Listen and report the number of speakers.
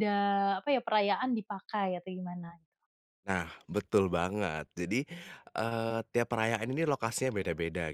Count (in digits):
2